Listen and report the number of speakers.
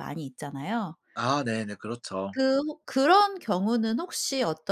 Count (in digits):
2